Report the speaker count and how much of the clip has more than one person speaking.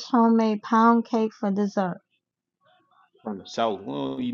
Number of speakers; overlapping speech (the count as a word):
two, no overlap